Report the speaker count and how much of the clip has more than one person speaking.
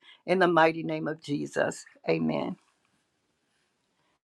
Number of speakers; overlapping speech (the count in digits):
1, no overlap